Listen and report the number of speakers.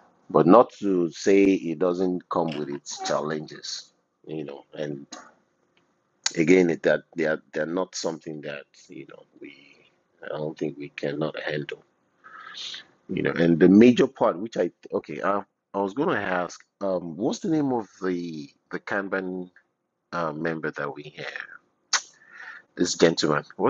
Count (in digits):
1